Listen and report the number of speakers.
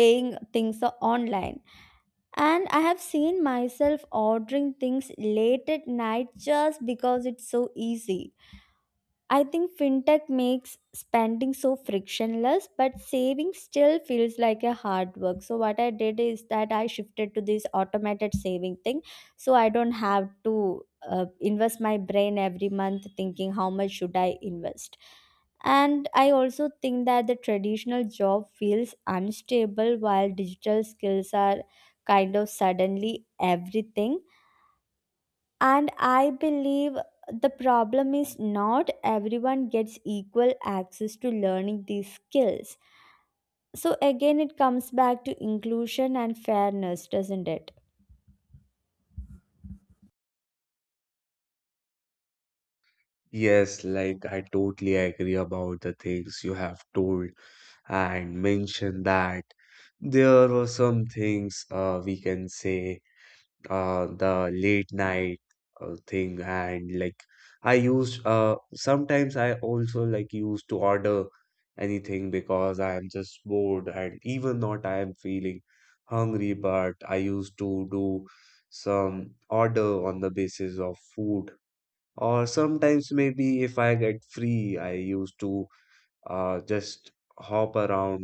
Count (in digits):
2